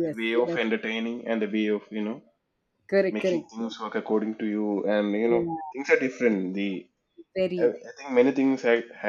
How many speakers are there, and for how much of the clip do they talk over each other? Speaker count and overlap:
two, about 17%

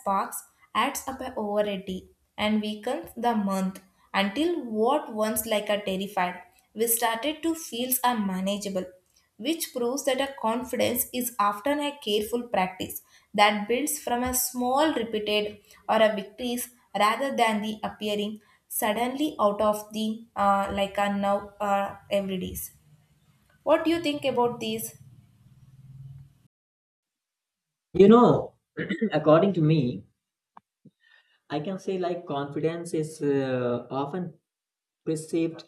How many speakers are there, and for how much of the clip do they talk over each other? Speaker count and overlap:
two, no overlap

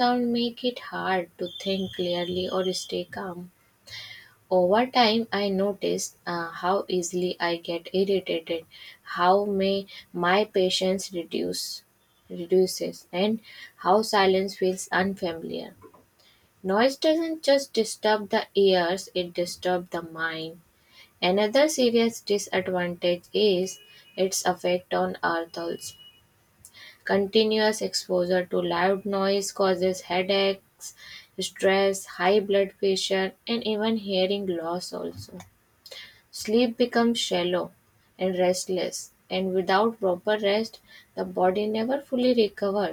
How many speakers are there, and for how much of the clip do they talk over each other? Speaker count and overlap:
one, no overlap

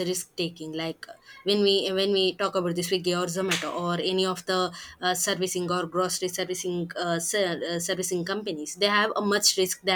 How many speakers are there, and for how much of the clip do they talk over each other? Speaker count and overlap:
one, no overlap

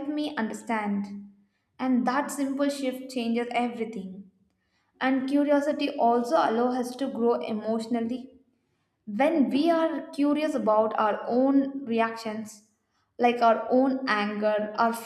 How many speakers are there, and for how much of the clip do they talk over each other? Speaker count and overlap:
one, no overlap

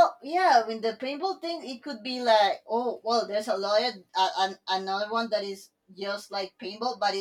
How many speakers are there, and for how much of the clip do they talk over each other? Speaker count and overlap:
one, no overlap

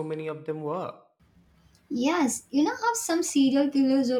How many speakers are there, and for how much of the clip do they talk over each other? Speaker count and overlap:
two, no overlap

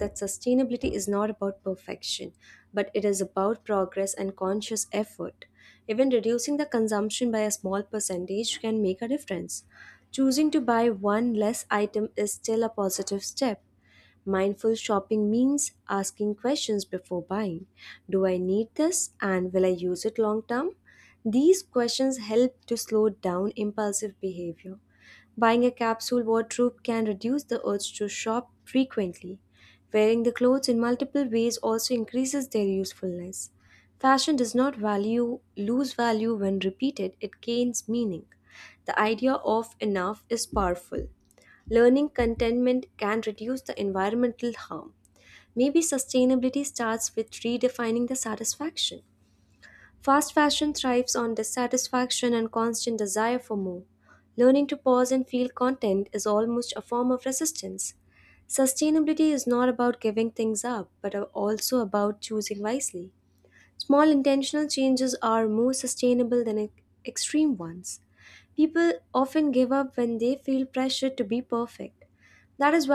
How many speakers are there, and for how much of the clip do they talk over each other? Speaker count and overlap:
one, no overlap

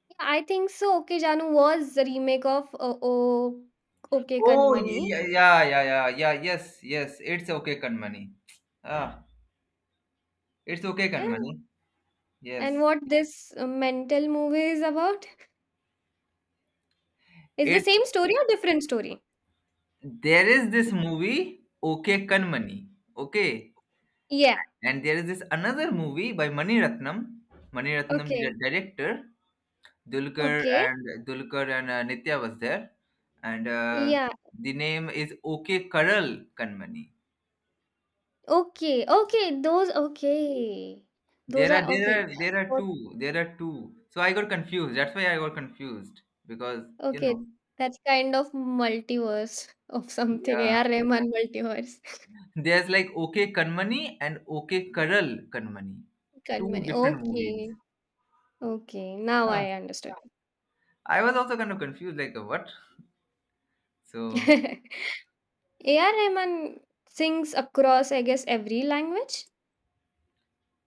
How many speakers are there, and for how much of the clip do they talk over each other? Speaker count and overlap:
two, about 8%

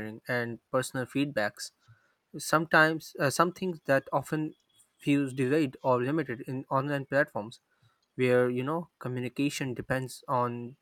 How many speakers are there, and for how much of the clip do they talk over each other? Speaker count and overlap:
one, no overlap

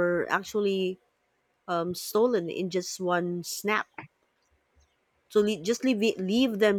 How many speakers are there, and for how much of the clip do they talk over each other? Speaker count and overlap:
one, no overlap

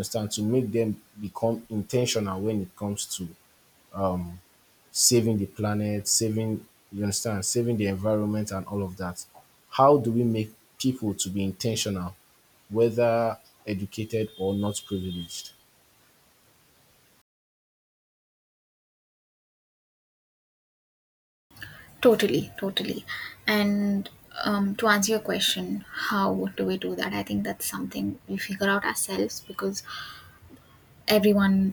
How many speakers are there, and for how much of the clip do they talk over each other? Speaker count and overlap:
two, no overlap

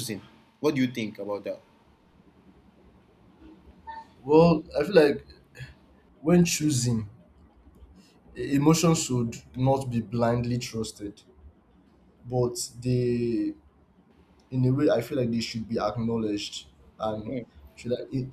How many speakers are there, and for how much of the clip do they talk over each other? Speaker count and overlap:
two, under 1%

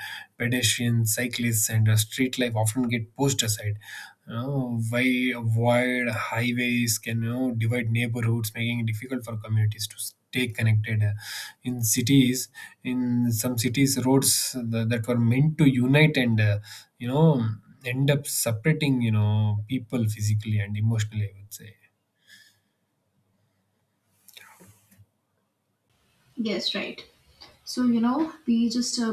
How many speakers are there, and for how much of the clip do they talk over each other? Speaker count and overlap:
two, no overlap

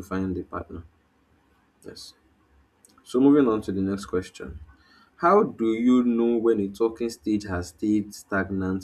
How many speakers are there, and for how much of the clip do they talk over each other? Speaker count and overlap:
one, no overlap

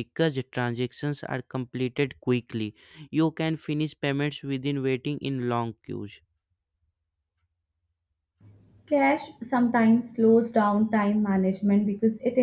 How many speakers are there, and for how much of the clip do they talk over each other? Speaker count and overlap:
two, no overlap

